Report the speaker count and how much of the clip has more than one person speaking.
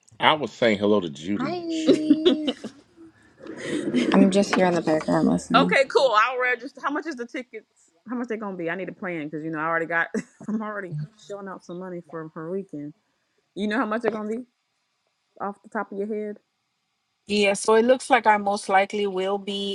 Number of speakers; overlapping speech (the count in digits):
4, about 6%